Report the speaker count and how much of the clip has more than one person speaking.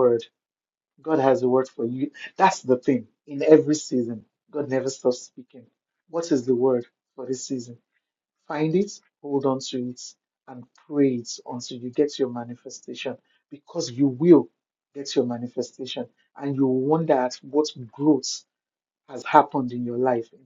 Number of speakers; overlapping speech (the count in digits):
1, no overlap